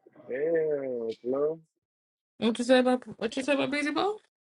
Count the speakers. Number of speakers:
2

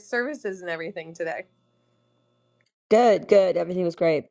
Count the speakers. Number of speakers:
2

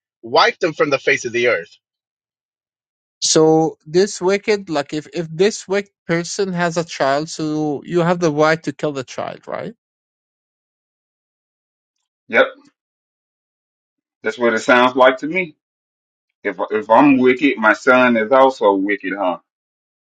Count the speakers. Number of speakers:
3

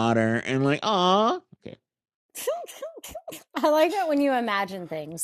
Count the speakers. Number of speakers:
2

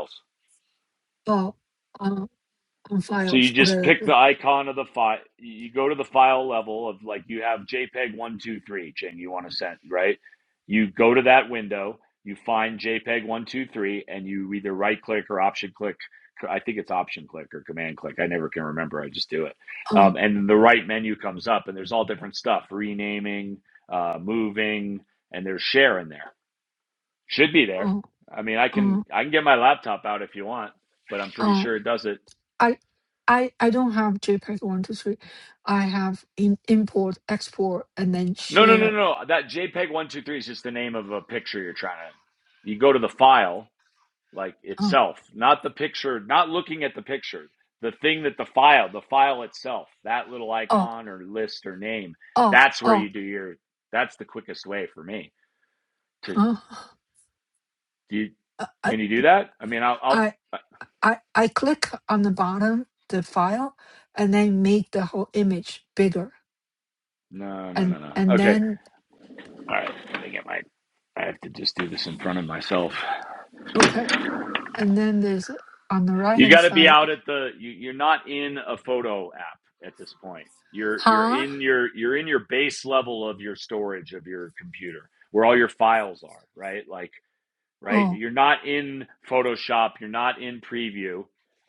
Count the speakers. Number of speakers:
2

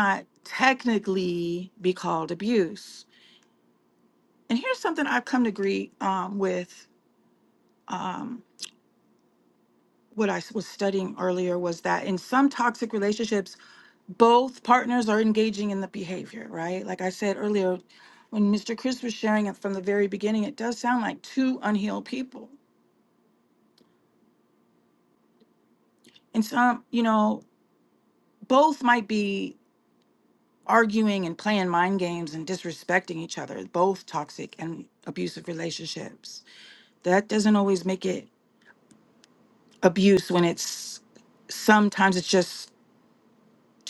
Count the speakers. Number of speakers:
1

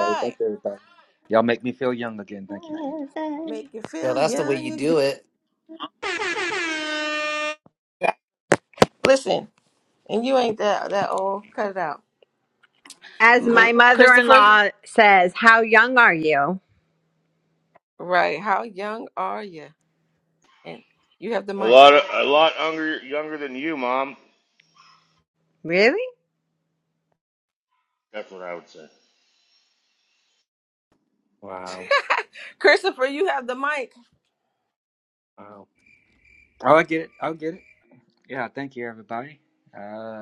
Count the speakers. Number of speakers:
5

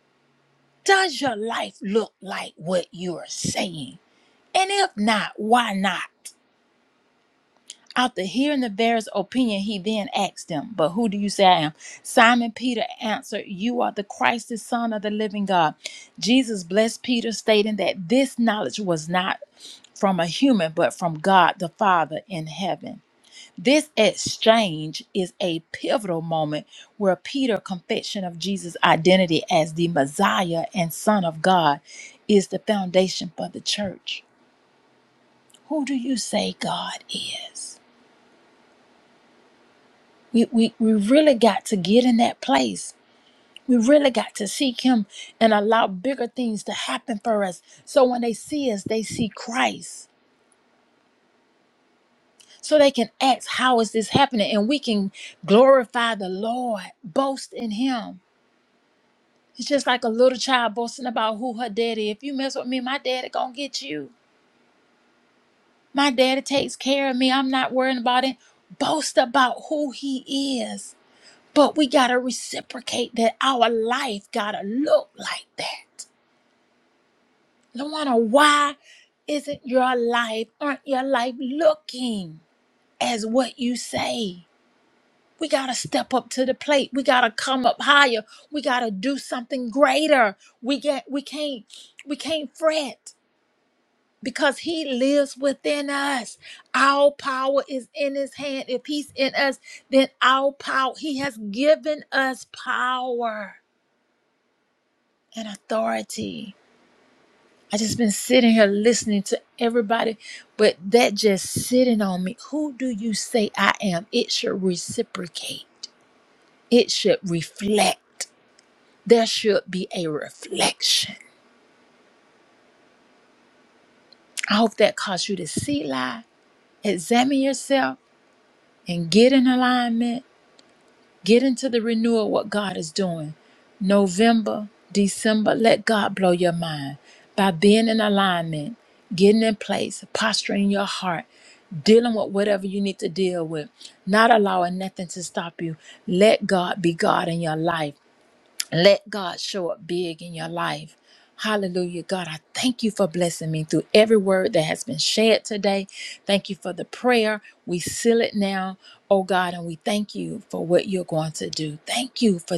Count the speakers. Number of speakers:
1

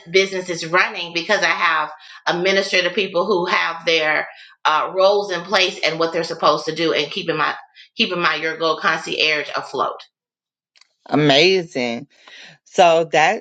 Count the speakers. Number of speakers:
2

